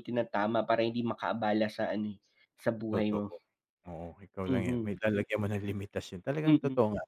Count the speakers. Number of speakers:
two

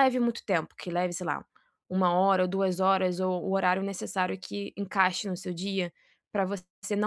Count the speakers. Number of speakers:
one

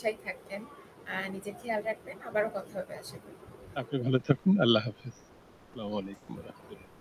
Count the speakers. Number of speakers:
two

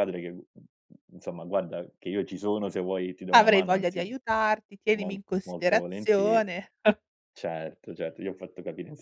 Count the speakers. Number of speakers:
two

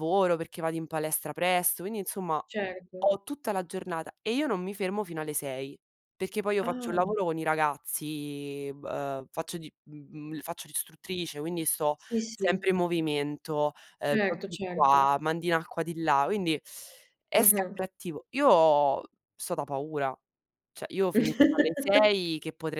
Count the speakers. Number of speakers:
two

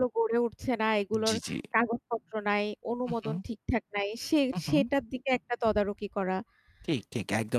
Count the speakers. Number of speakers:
two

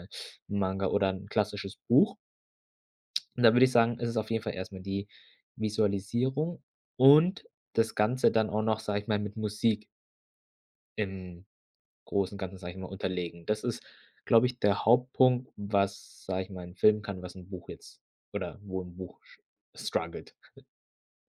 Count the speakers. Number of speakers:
one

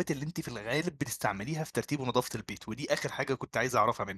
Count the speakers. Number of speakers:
one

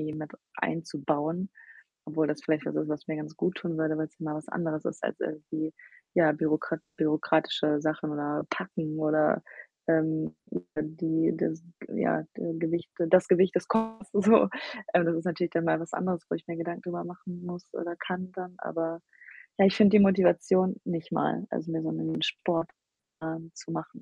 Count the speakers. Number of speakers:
one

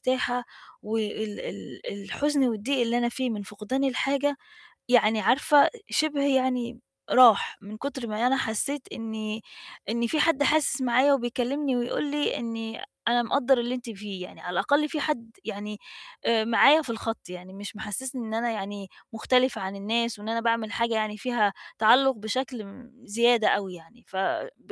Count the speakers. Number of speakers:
one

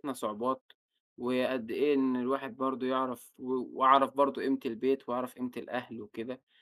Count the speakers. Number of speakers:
one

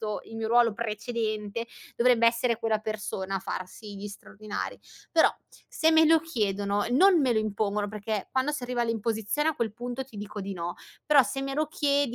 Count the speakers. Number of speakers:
one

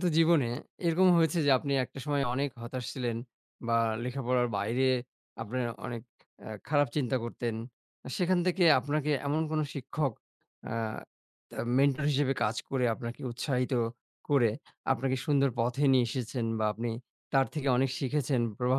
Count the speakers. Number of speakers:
one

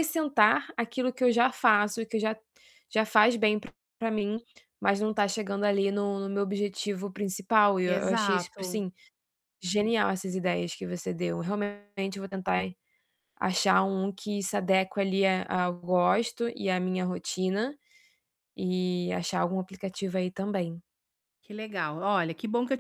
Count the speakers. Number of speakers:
two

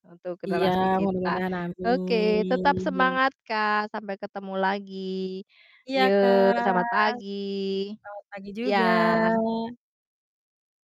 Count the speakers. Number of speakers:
two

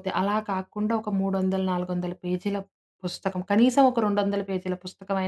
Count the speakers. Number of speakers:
one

